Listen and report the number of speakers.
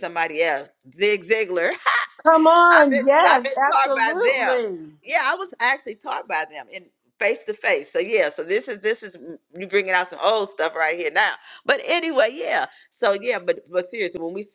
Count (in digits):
2